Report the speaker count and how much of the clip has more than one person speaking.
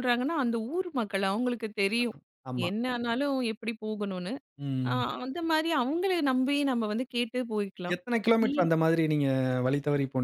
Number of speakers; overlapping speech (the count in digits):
2, about 5%